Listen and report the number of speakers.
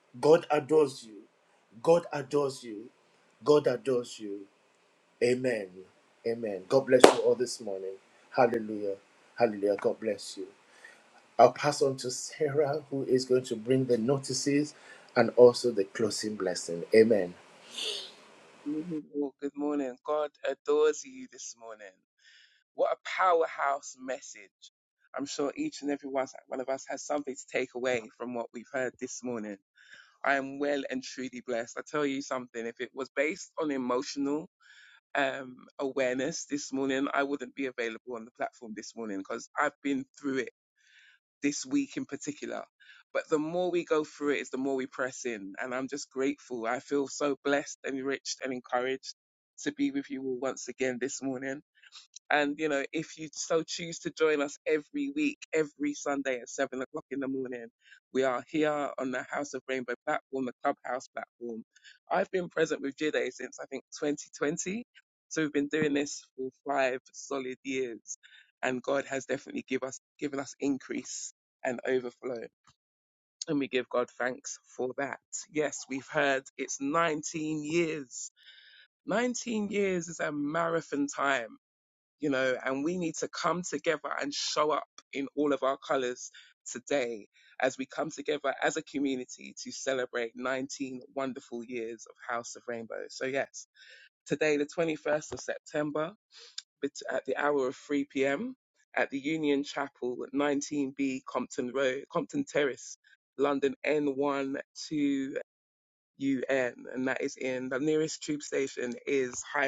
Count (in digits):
2